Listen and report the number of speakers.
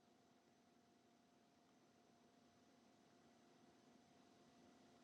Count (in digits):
0